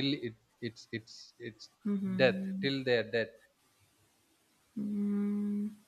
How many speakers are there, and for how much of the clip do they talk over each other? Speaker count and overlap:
two, about 8%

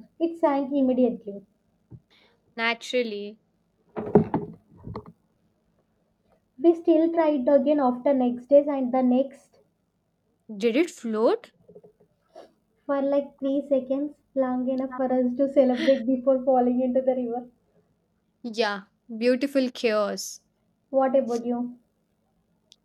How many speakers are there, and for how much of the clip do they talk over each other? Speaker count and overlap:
two, no overlap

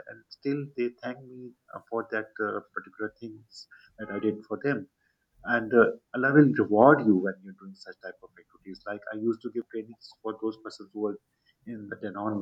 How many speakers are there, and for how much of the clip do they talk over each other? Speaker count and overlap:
one, no overlap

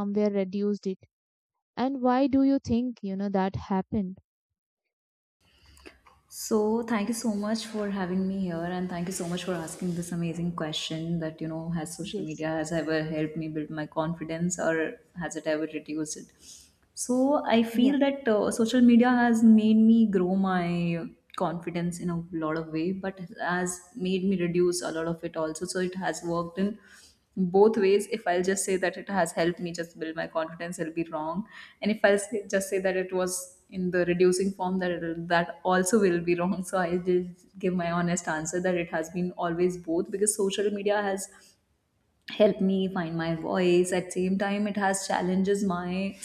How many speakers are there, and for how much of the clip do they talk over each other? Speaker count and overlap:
two, about 1%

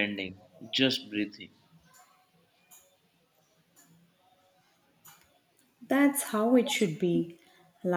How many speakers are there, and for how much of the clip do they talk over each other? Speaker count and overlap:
two, no overlap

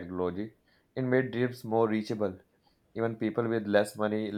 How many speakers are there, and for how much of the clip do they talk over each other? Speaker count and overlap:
one, no overlap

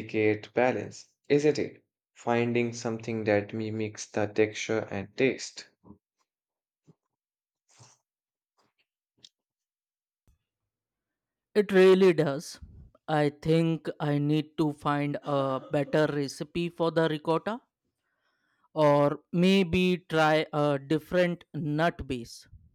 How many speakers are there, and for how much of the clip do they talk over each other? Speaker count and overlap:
two, no overlap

